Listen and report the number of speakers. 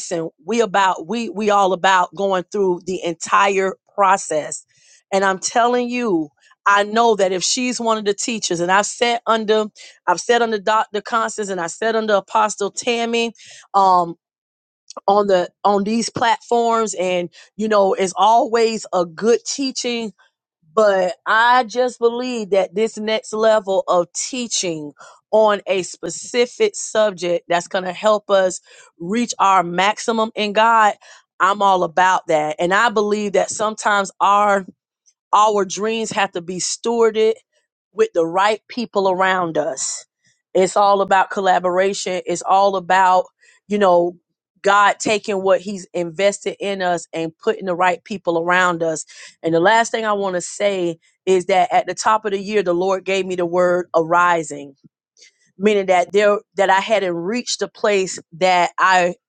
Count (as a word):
one